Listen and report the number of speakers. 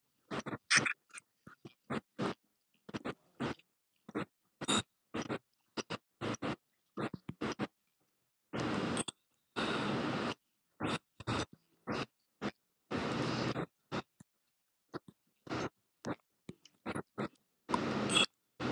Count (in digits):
0